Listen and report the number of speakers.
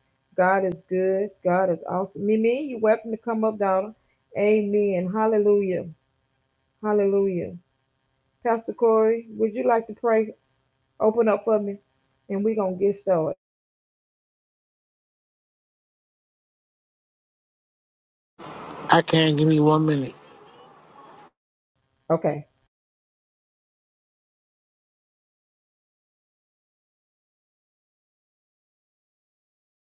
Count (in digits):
2